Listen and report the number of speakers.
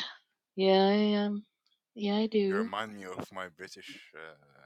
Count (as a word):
two